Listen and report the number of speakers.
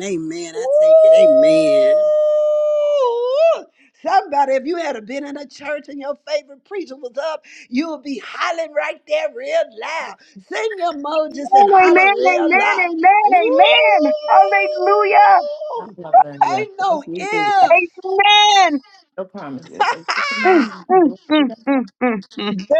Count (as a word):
four